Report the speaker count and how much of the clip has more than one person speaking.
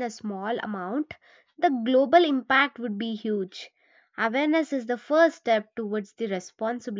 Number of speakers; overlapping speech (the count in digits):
1, no overlap